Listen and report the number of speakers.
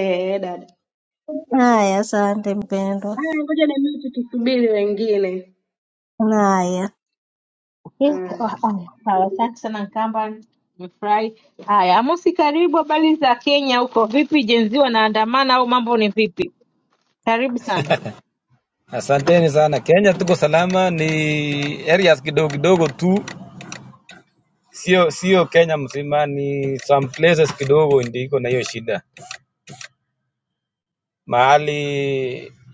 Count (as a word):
four